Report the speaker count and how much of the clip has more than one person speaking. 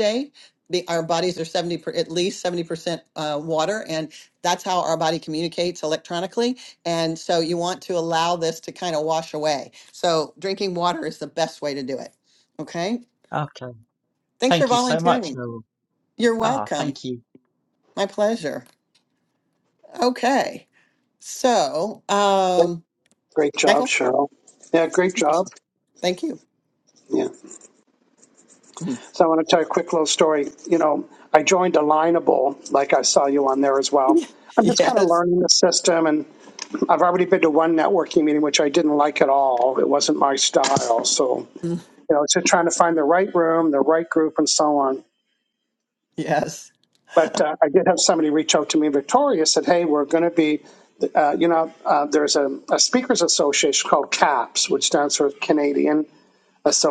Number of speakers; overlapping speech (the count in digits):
3, about 4%